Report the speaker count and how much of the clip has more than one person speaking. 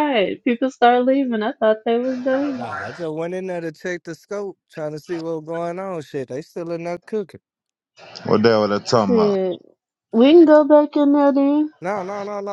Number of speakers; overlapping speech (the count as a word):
three, about 3%